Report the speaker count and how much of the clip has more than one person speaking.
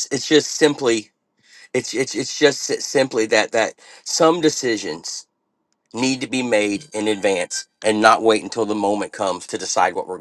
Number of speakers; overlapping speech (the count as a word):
one, no overlap